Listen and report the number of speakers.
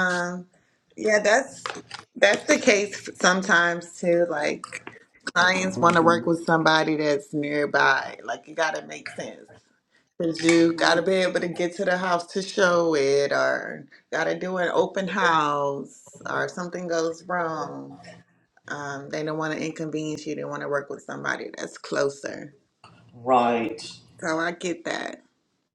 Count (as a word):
two